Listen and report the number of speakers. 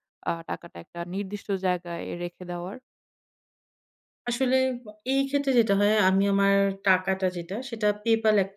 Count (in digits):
2